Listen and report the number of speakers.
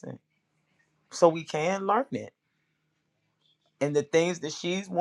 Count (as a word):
one